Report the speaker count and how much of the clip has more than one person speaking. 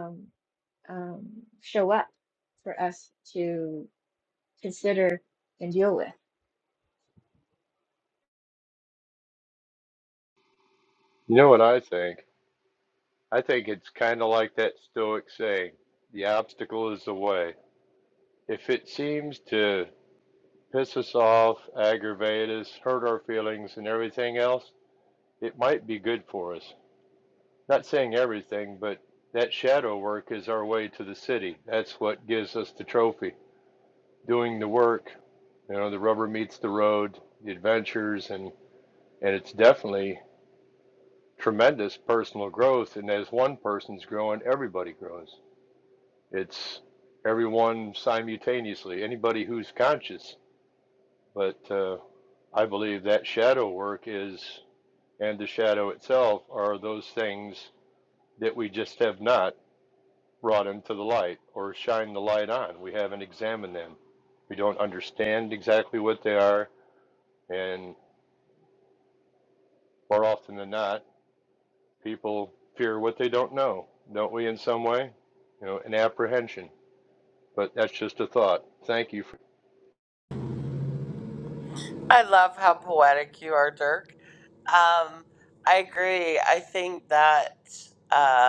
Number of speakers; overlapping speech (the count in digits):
3, no overlap